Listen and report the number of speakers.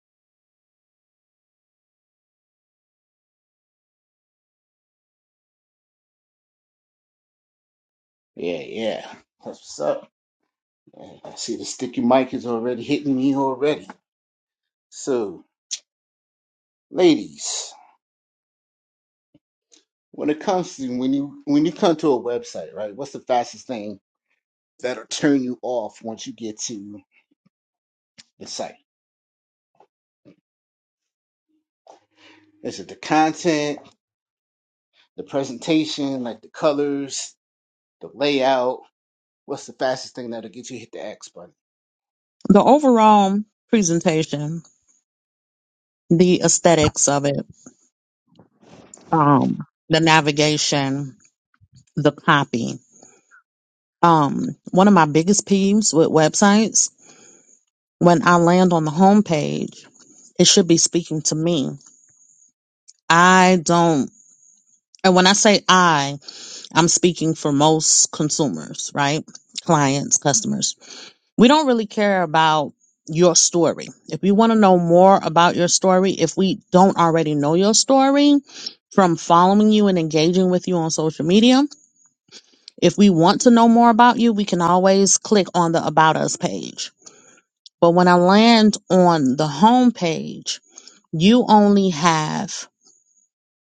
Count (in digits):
2